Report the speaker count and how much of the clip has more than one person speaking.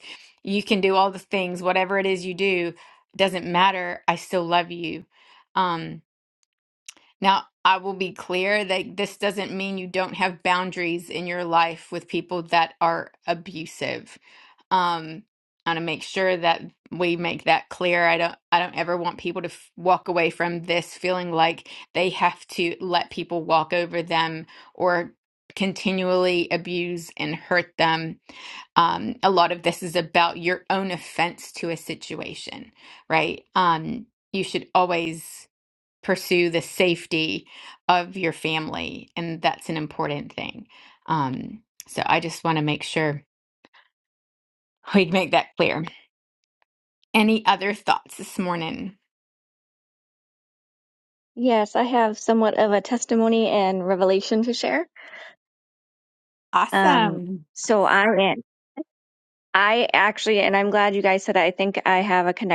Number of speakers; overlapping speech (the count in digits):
2, about 1%